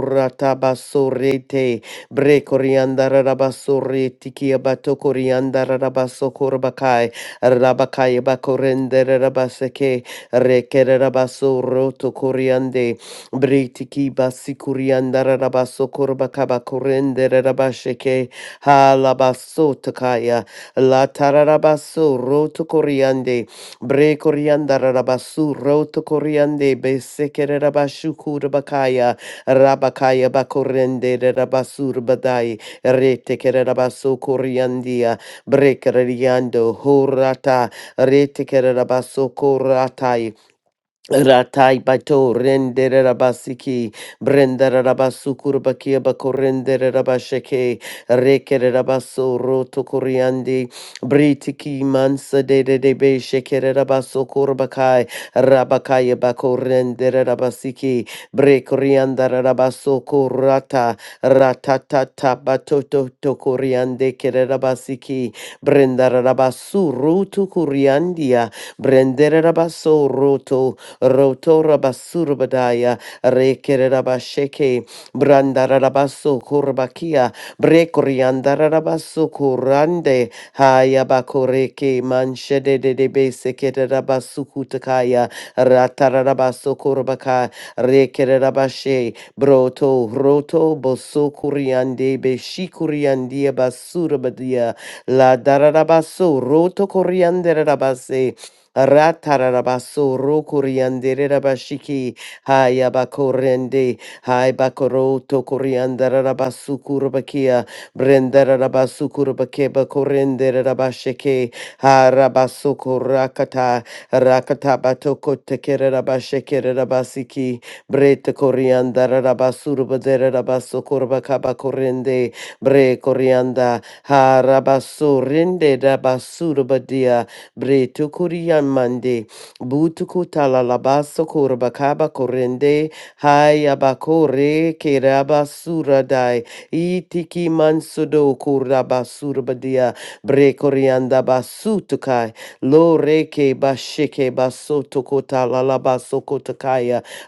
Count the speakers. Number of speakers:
1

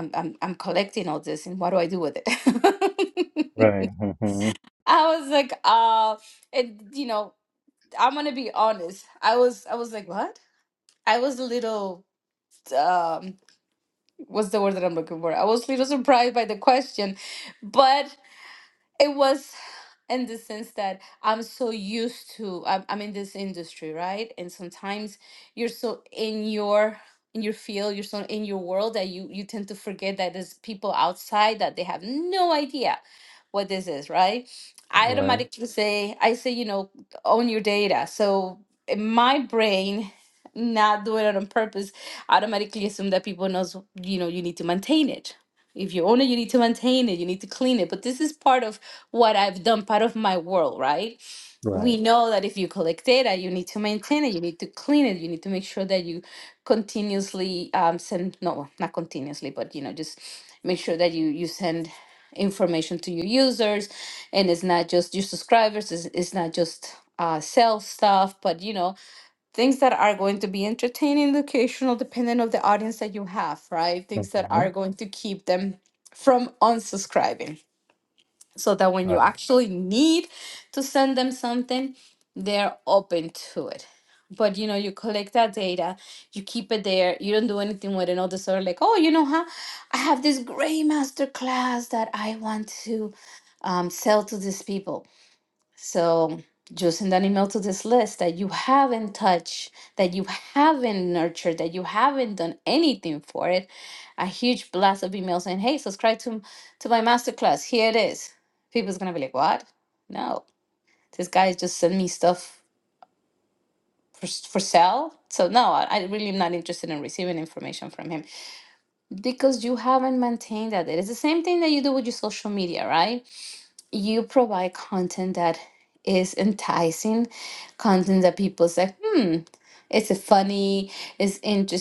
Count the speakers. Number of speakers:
2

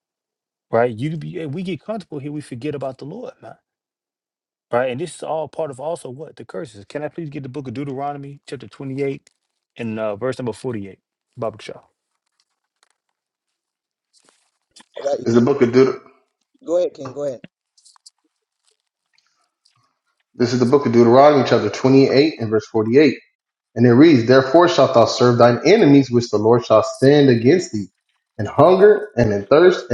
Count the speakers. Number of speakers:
3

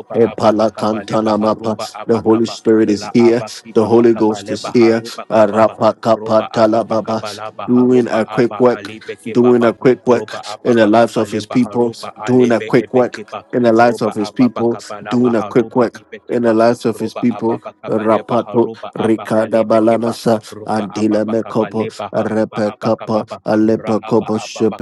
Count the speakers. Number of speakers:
2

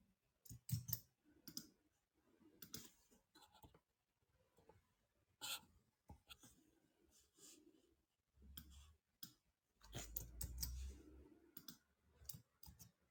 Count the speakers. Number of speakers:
0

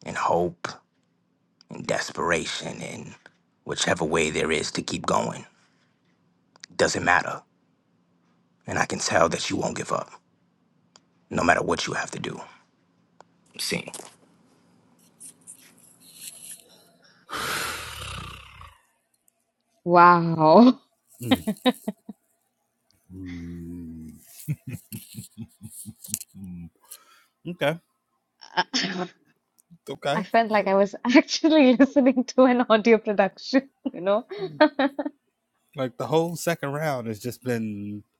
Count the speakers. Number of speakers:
3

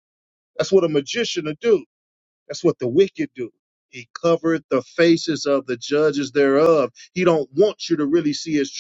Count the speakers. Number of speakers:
1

